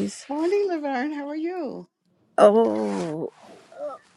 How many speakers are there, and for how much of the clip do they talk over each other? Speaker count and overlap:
2, no overlap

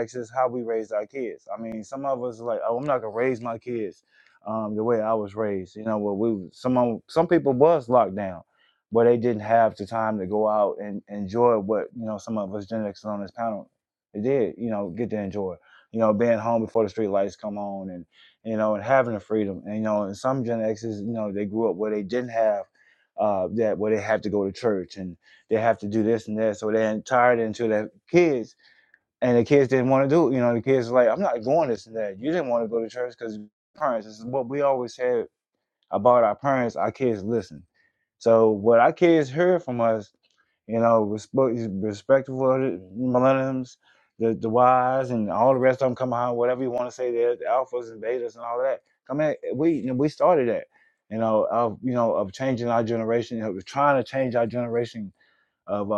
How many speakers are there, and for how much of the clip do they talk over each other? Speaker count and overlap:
1, no overlap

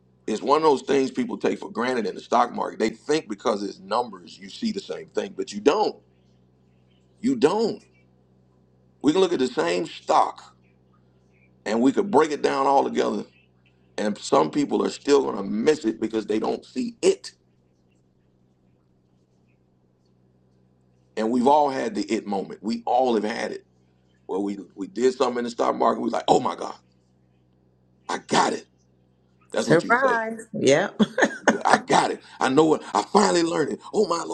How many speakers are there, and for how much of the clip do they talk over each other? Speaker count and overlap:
2, about 2%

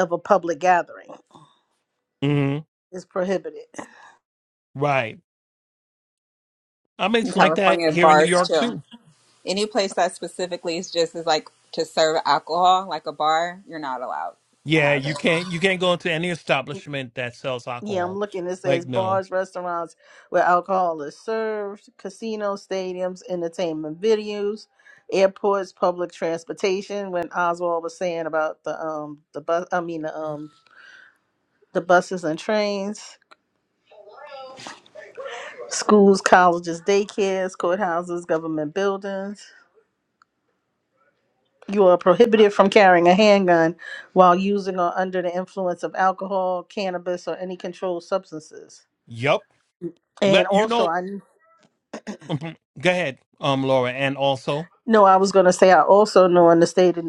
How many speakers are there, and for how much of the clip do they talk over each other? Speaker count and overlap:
3, about 6%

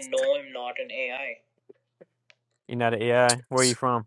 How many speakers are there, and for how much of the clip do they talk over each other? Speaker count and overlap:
2, no overlap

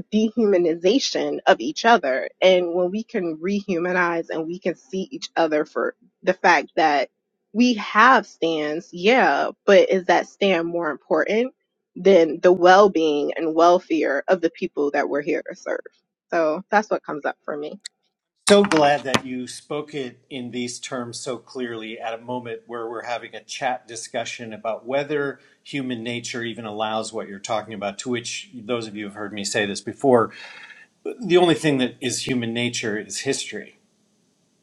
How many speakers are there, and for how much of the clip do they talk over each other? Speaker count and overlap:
2, no overlap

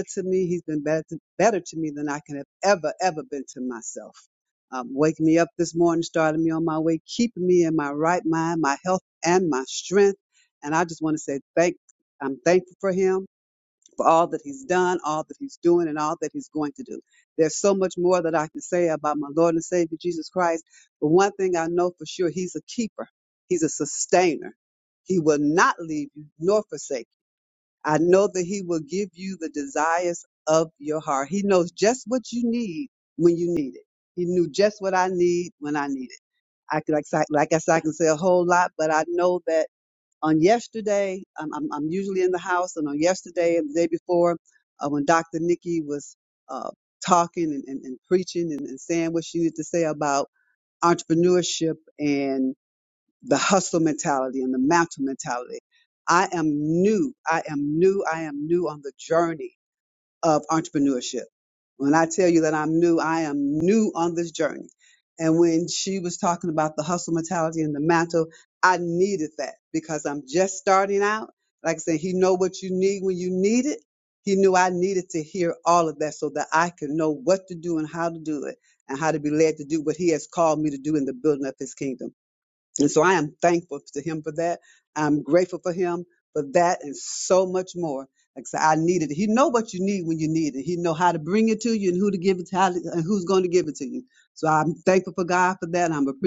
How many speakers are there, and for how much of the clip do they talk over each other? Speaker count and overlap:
1, no overlap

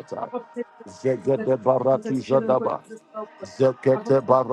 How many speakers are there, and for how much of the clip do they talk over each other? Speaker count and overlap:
2, about 41%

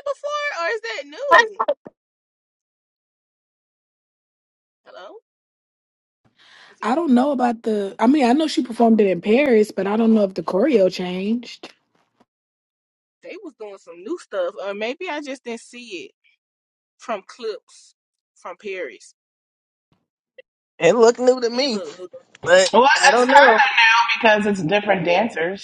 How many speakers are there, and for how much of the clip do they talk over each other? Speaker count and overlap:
4, about 5%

